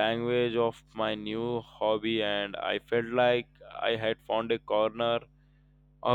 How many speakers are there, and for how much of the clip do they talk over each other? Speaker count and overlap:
1, no overlap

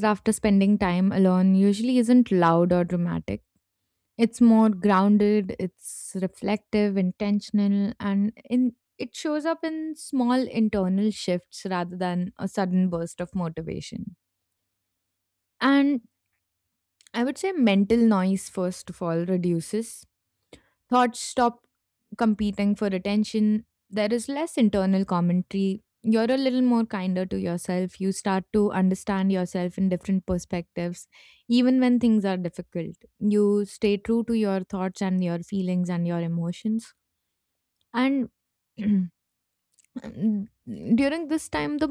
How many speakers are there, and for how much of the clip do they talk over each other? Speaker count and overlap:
1, no overlap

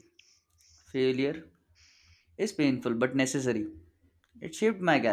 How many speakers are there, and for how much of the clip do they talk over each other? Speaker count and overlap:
1, no overlap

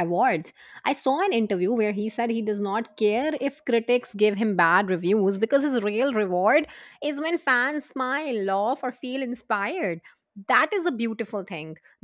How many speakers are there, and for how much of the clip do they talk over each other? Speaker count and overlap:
1, no overlap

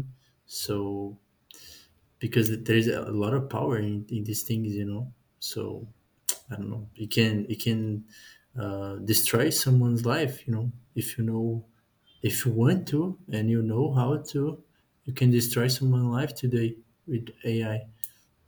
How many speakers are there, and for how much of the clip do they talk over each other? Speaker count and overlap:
1, no overlap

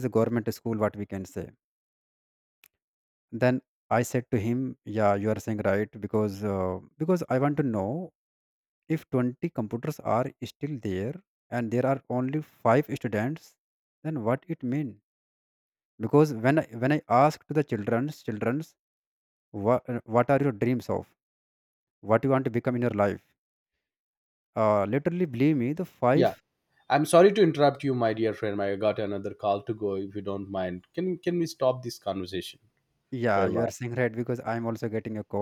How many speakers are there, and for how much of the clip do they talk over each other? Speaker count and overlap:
2, about 2%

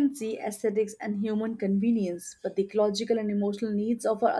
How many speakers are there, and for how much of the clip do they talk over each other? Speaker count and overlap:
1, no overlap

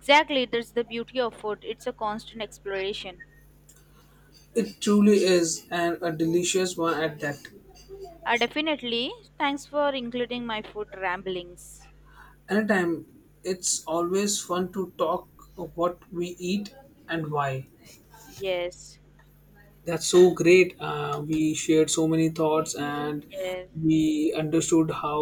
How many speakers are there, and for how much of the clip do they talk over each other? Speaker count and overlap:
2, no overlap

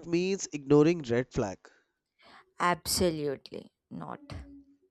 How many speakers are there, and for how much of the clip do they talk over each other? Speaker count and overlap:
2, no overlap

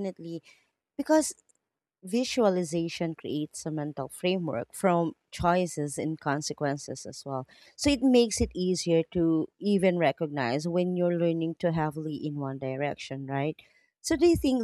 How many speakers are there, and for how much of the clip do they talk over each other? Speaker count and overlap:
1, no overlap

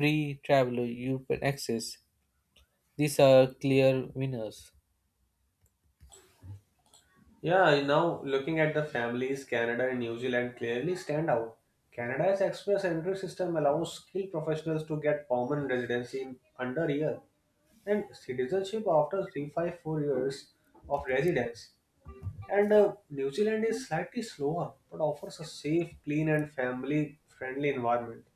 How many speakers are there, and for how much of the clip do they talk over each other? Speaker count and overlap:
2, no overlap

